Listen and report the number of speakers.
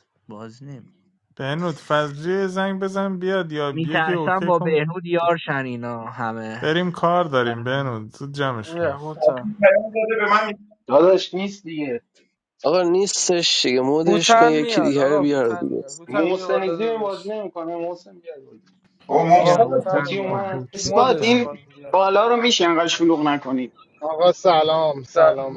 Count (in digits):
8